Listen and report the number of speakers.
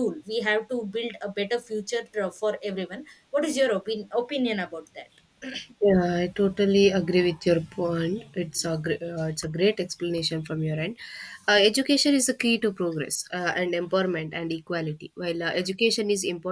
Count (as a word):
two